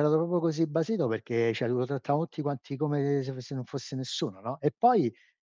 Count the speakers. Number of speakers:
1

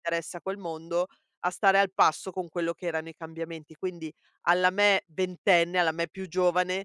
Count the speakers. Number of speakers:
1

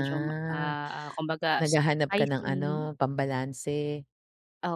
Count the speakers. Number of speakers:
2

